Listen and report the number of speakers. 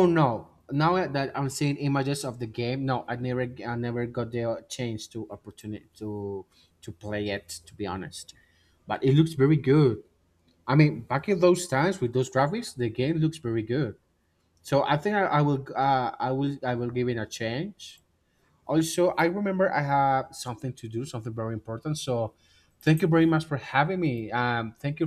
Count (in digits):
1